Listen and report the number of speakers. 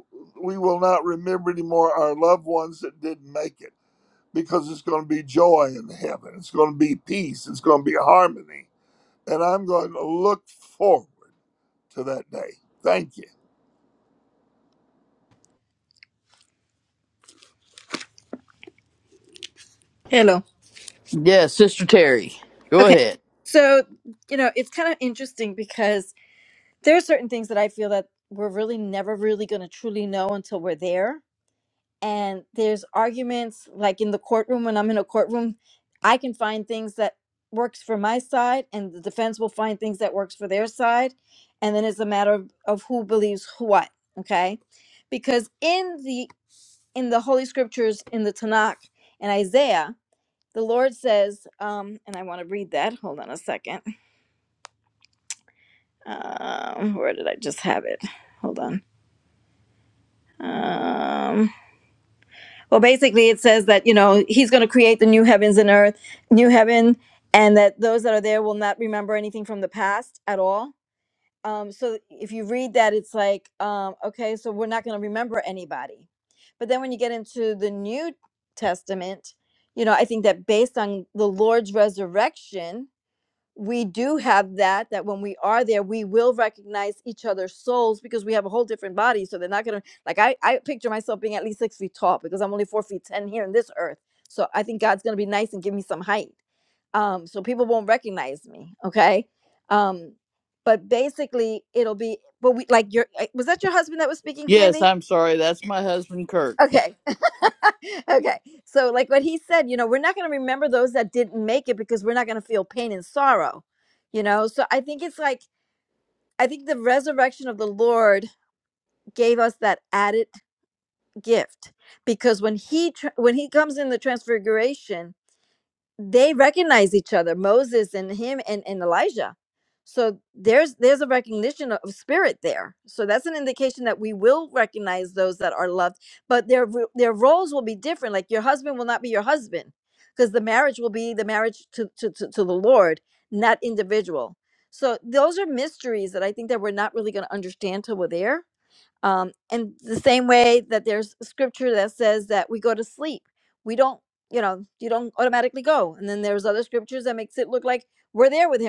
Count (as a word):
three